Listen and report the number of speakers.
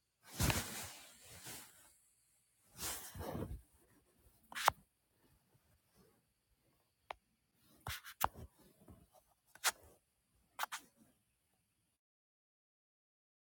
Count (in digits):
0